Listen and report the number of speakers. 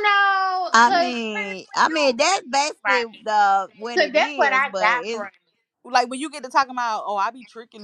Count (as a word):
three